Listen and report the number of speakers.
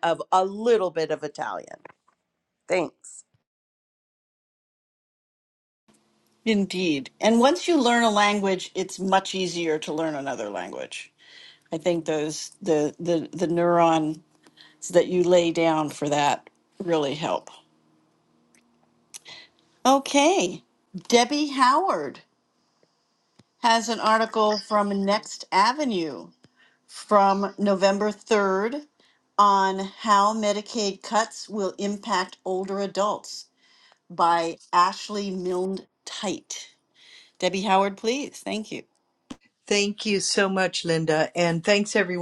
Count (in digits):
3